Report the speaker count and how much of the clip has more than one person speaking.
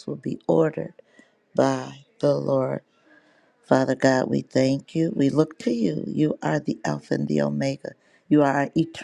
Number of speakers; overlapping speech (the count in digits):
1, no overlap